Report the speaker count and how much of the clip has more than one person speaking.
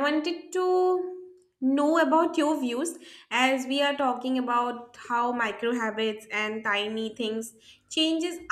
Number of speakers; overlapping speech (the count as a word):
one, no overlap